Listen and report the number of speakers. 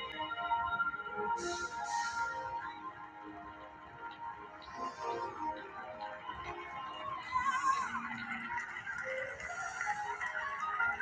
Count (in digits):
0